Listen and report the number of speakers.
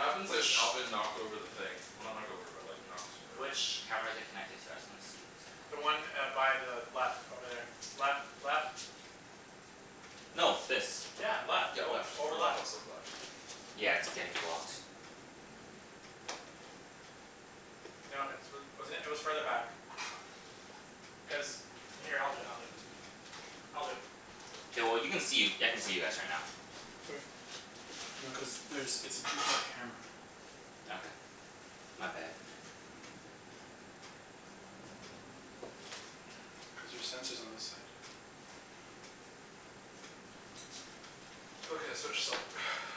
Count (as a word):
three